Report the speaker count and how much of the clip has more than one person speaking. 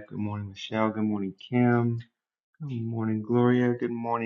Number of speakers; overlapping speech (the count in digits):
1, no overlap